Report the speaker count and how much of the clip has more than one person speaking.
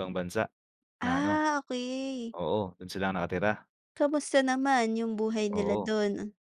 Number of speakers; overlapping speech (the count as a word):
two, about 12%